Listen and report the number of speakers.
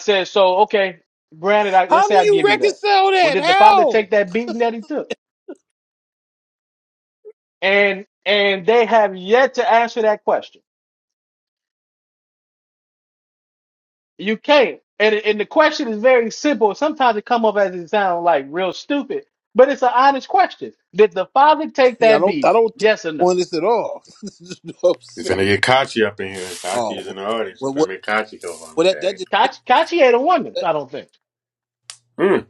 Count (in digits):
3